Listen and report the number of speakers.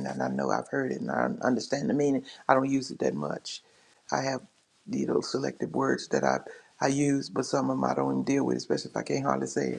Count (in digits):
1